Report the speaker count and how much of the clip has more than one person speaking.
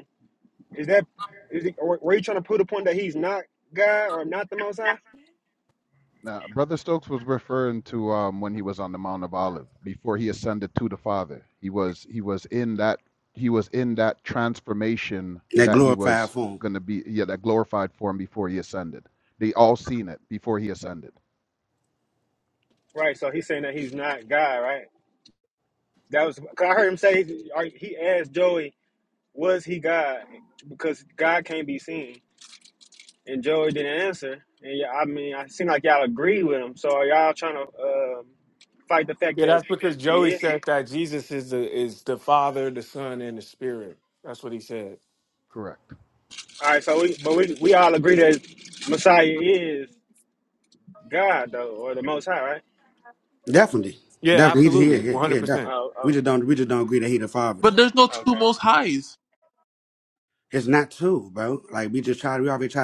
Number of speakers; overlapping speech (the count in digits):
5, about 5%